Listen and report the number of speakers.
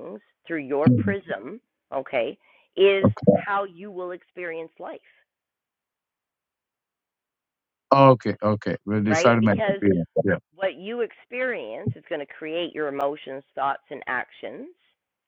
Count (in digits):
2